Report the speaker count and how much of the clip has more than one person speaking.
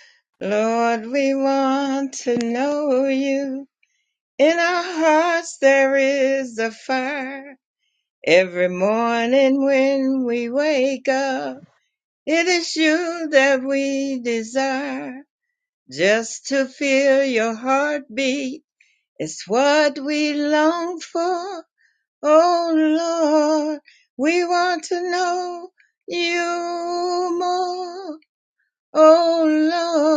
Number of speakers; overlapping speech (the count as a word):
one, no overlap